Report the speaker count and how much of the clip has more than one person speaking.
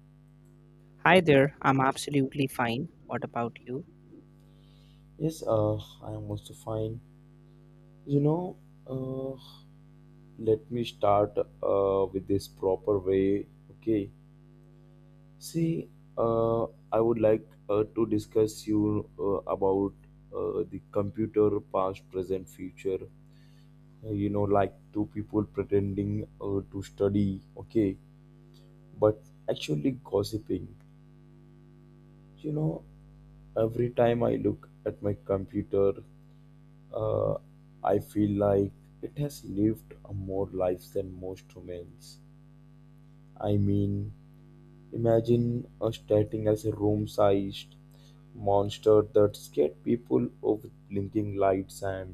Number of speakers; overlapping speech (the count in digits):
2, no overlap